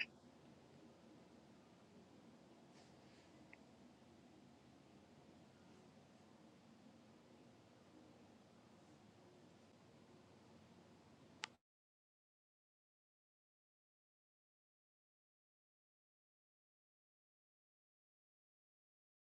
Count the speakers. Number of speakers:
0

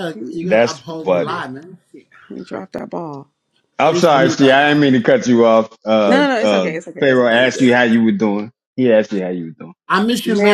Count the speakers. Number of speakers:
3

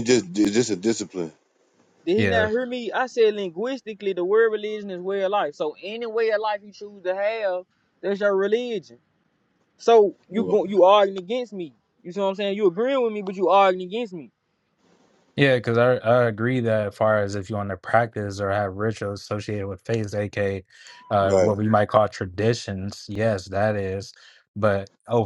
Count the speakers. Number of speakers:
3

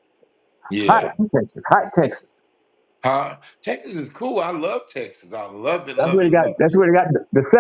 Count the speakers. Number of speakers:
2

